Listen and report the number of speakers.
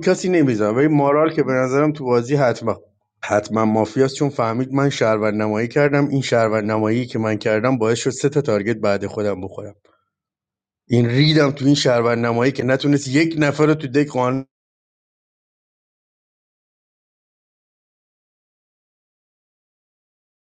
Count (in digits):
1